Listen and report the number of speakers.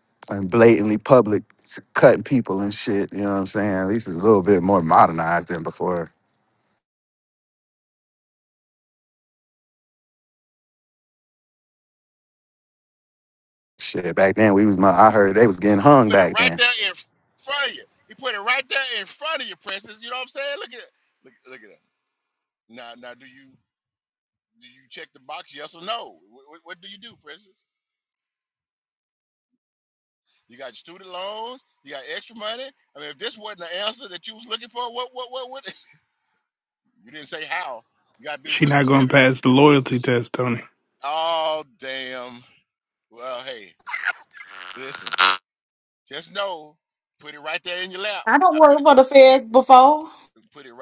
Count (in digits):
4